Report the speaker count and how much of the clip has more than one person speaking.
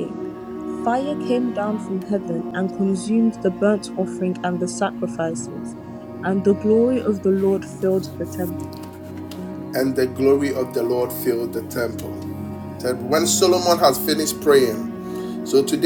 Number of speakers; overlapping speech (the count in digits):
2, no overlap